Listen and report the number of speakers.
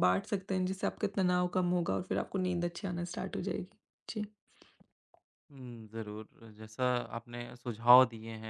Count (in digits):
2